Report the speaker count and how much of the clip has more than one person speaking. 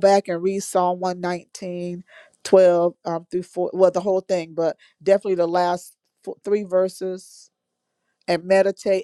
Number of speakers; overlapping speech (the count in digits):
1, no overlap